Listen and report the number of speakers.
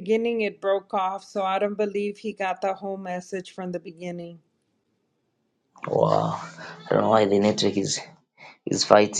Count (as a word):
two